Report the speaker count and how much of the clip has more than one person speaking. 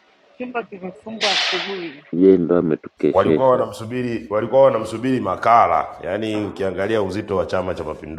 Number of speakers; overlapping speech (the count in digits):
3, about 6%